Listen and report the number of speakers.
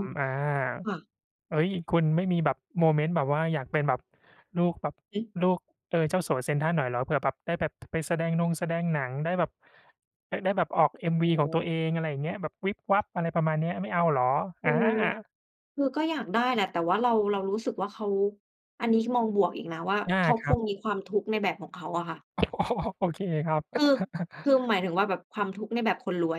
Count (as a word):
two